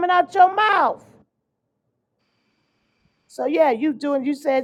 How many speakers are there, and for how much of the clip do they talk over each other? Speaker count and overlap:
1, no overlap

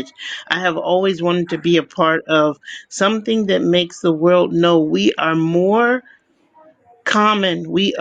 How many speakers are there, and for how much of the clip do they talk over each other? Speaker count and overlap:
1, no overlap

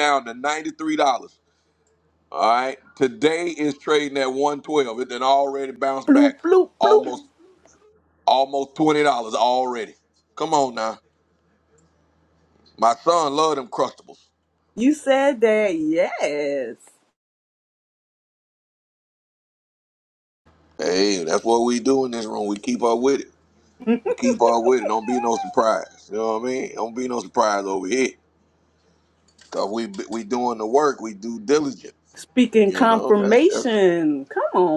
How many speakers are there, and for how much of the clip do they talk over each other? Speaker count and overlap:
2, about 4%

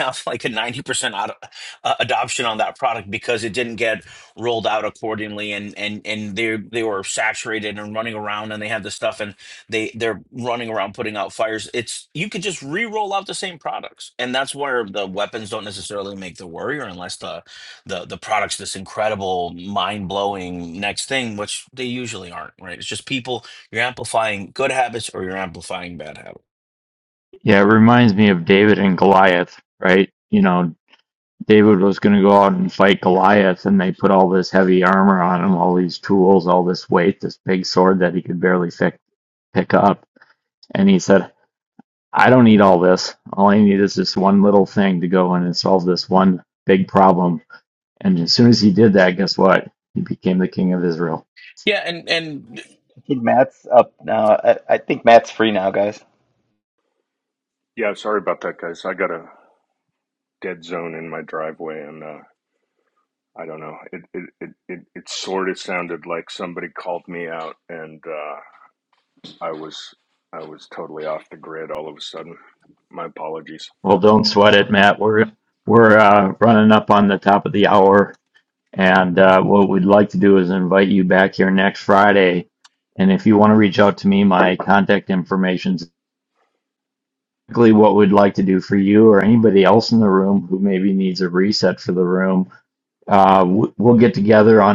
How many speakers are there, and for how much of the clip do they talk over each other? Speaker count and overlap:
4, no overlap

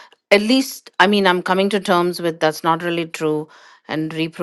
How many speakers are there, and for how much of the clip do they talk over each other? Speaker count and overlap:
1, no overlap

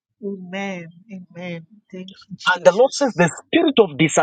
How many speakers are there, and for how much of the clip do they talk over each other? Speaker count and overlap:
2, about 8%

